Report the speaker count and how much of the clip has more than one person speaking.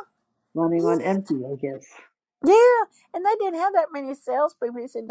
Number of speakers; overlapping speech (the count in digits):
2, about 4%